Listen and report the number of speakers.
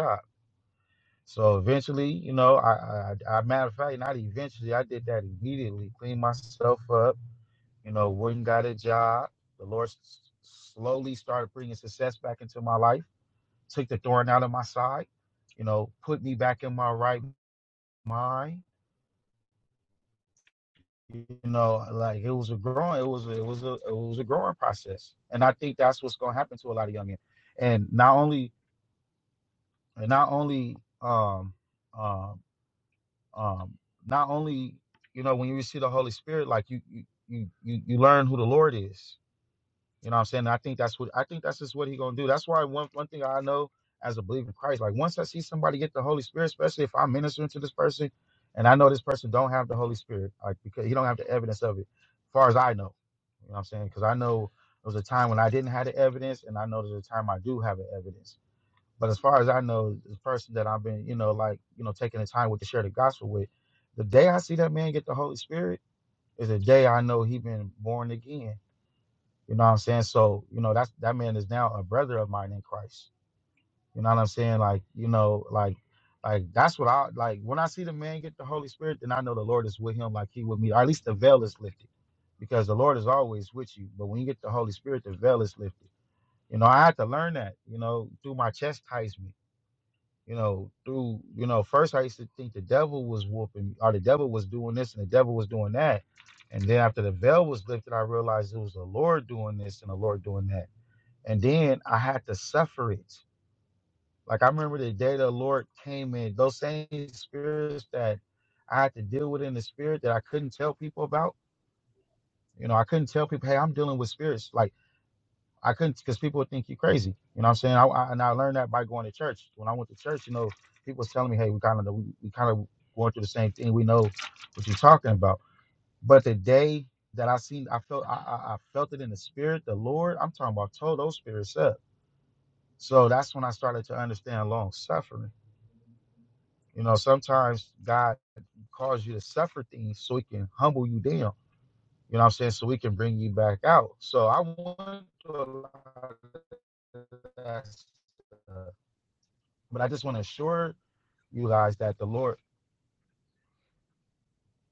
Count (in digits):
1